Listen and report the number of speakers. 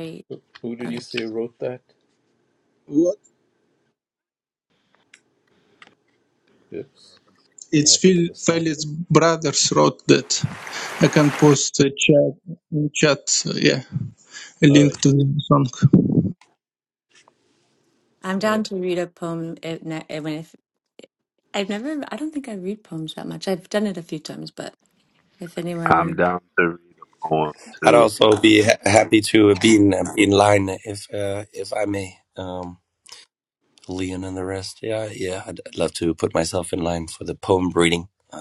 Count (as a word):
five